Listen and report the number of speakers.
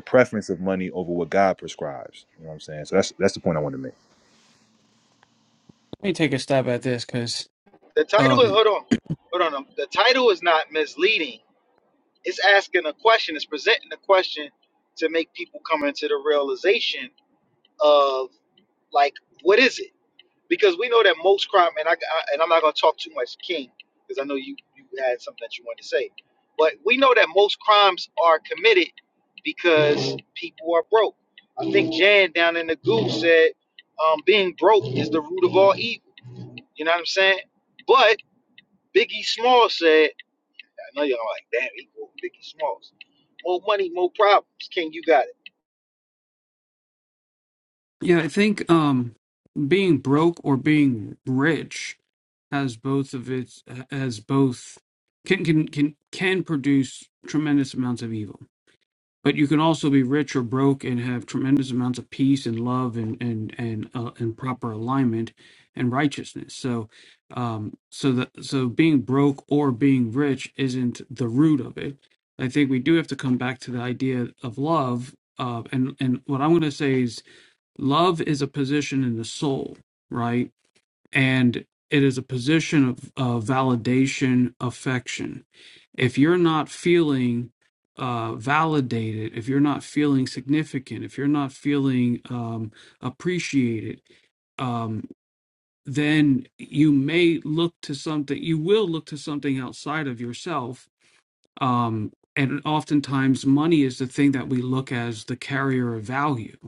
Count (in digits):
3